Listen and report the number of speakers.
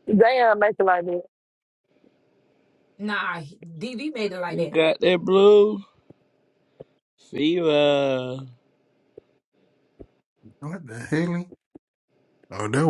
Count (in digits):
4